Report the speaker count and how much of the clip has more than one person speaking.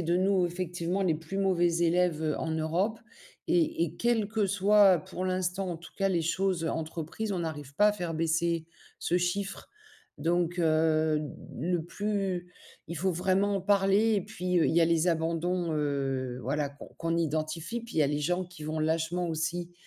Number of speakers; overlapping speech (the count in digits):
1, no overlap